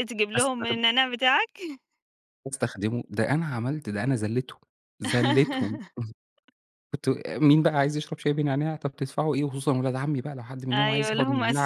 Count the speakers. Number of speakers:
two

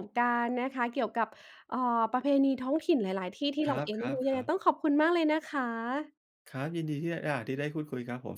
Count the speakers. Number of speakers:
two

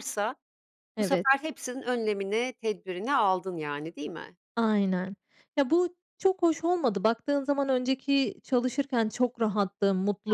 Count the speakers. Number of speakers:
two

